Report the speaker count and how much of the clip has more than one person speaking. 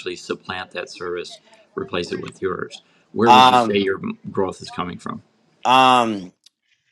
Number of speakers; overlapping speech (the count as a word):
two, about 7%